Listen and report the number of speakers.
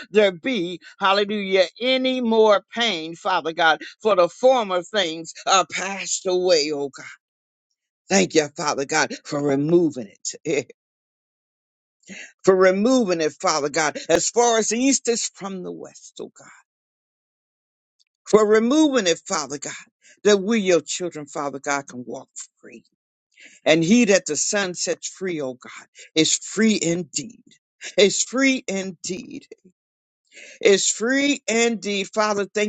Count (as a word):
one